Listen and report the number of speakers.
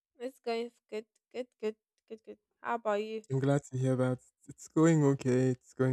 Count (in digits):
2